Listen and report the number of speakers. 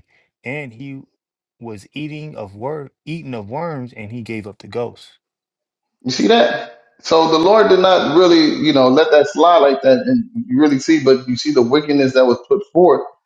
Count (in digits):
2